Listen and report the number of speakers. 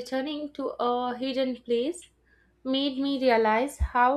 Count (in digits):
1